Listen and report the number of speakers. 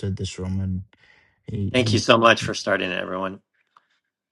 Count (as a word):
two